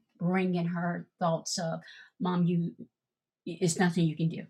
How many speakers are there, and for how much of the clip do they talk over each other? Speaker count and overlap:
1, no overlap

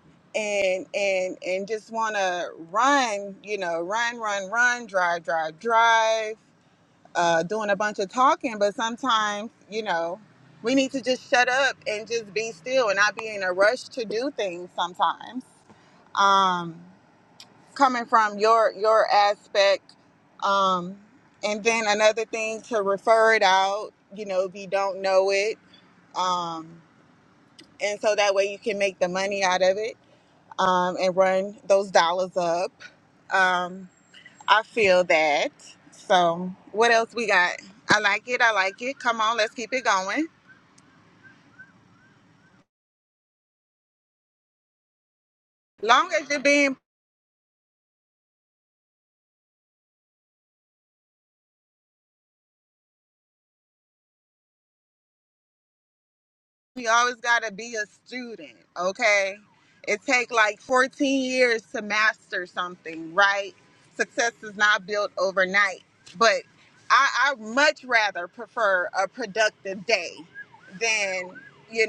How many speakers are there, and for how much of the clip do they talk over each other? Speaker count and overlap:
1, no overlap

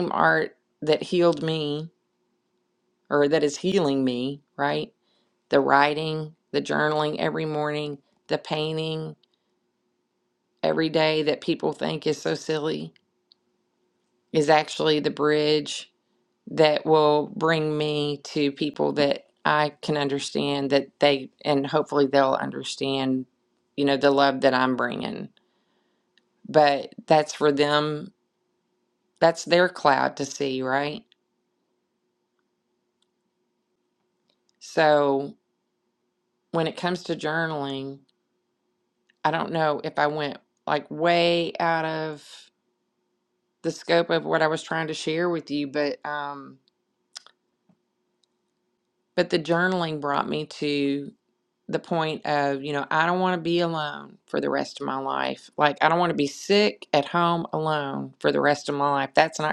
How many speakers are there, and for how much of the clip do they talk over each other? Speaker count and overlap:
1, no overlap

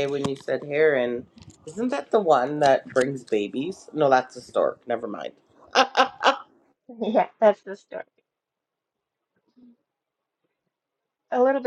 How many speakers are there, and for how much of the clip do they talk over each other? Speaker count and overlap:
2, no overlap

